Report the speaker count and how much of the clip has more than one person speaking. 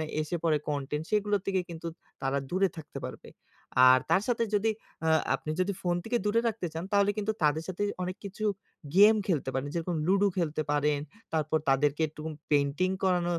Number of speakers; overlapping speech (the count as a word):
one, no overlap